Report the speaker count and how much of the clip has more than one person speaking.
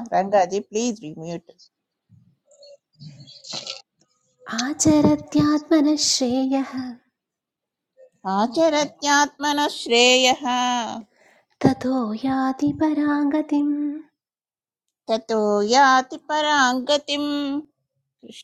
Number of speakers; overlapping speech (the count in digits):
2, under 1%